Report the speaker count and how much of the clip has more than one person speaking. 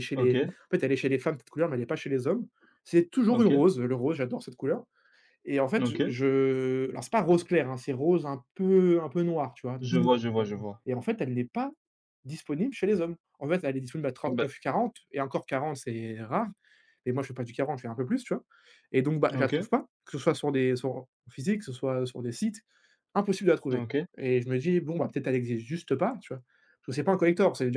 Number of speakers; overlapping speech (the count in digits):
2, about 6%